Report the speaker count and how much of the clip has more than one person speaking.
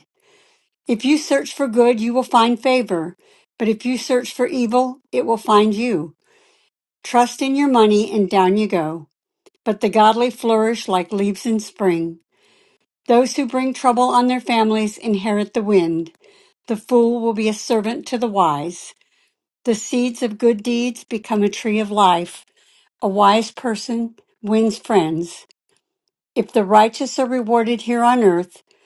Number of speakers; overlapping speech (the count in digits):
1, no overlap